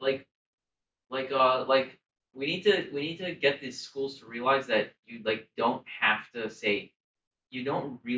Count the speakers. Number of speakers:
one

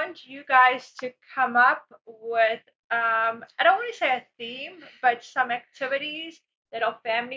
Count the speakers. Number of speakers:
one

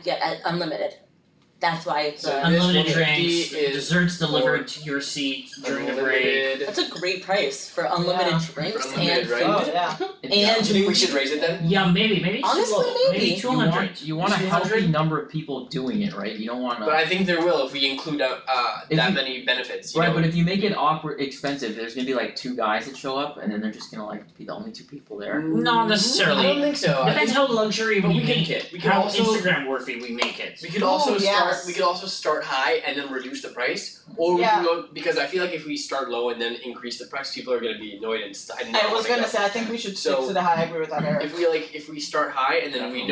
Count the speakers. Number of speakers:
five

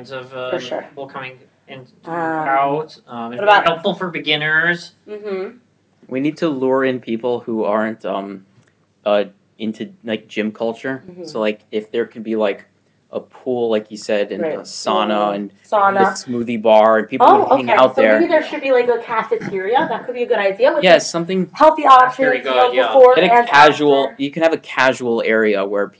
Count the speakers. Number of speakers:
three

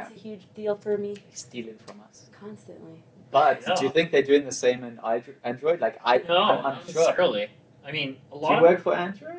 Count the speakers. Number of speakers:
three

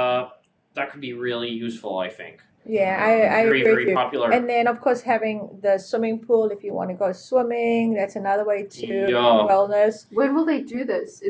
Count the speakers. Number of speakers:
three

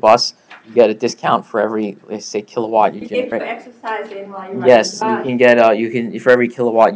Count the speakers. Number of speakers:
two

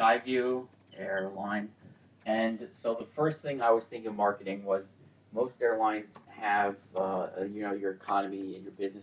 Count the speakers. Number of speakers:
one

